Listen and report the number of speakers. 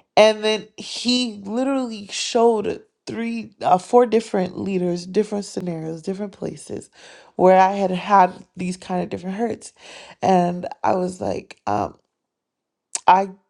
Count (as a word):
one